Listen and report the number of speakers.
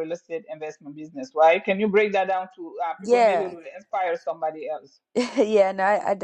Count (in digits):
2